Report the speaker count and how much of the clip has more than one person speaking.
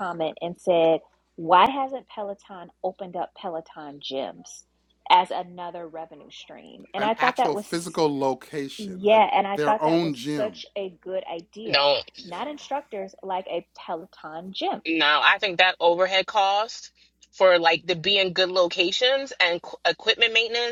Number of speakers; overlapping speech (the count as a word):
three, about 10%